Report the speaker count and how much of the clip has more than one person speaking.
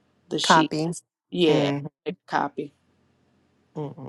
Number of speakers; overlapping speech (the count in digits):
2, about 12%